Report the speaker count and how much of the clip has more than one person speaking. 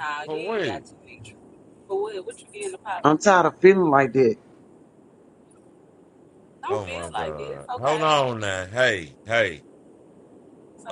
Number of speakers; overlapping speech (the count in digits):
3, about 23%